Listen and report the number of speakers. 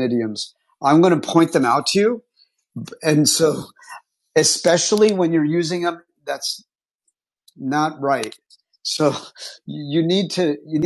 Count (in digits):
1